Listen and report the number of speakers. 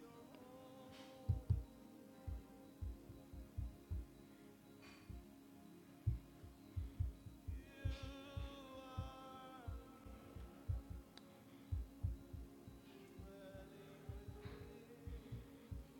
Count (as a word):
zero